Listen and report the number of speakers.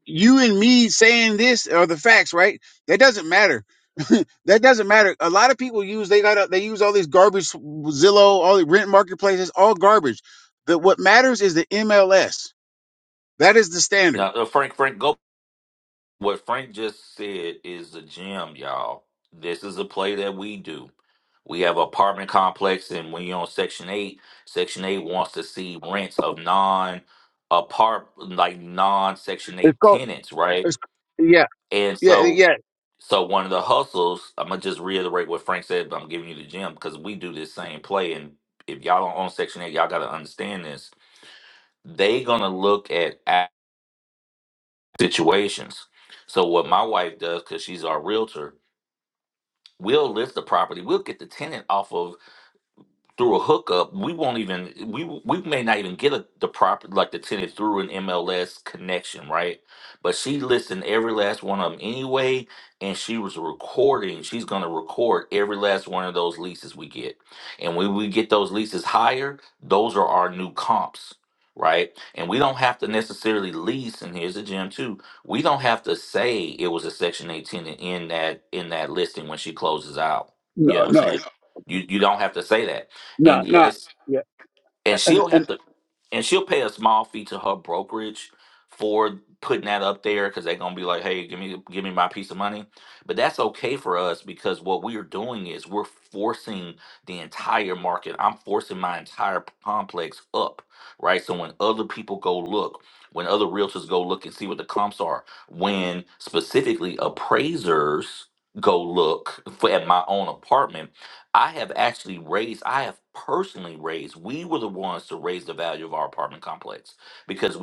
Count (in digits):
2